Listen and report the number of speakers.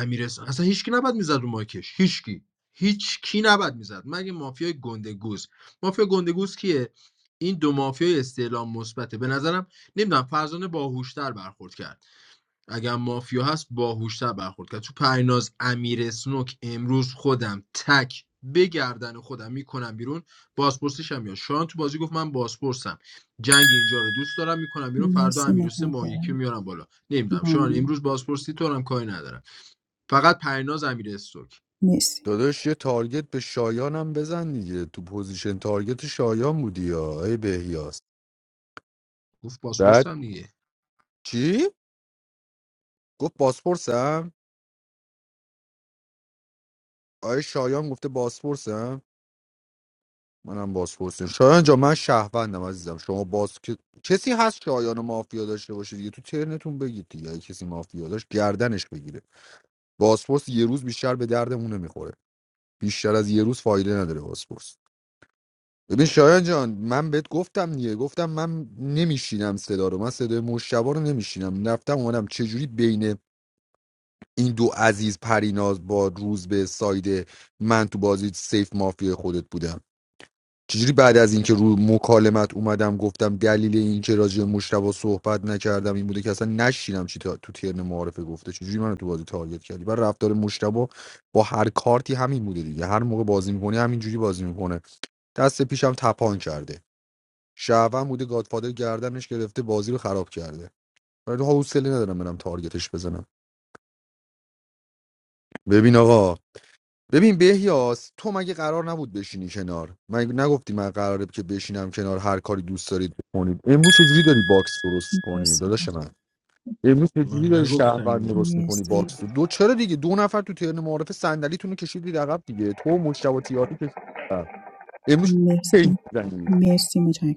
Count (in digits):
3